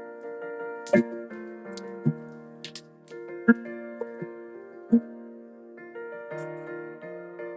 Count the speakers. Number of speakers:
0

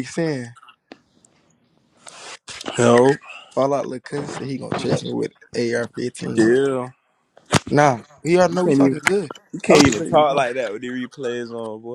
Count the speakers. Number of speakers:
2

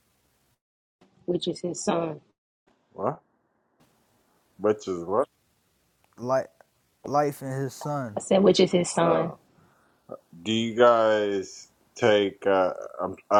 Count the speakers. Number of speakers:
3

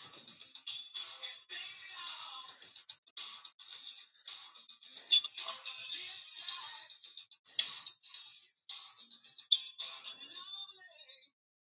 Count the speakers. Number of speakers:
0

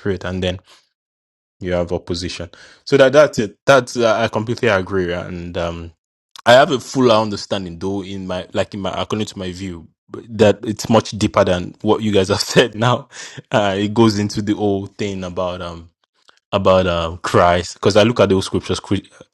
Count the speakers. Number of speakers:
1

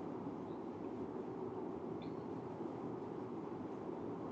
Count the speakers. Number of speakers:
0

